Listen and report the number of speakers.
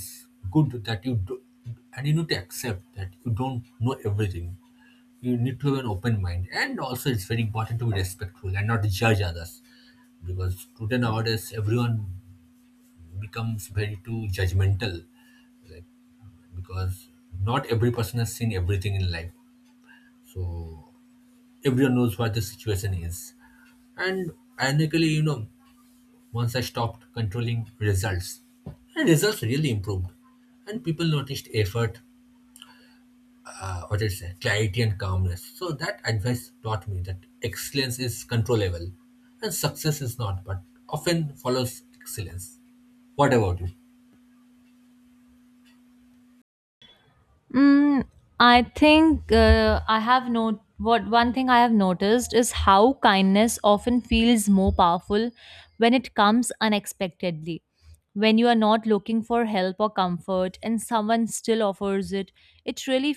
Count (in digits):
2